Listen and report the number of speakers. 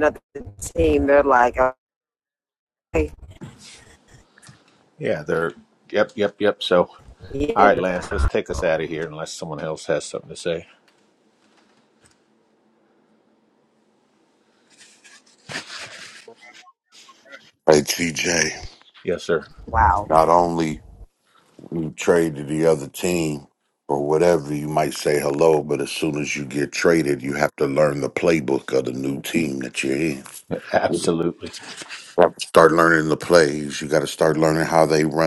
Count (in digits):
3